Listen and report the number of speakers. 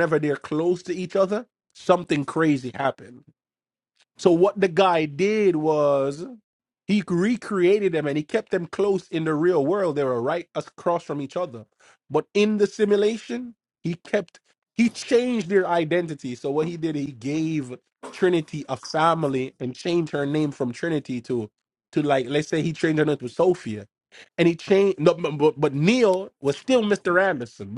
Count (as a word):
one